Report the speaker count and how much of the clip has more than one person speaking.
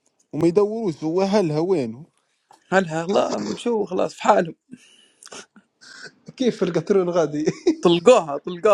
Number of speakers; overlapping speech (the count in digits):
3, no overlap